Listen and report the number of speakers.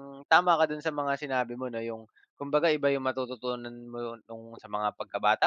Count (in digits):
1